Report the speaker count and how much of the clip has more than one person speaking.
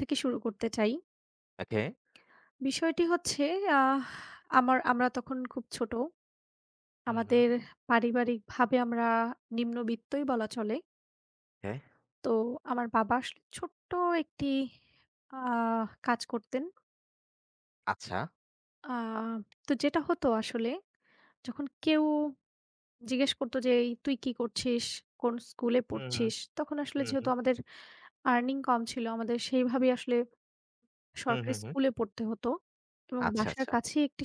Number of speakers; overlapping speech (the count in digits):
2, about 6%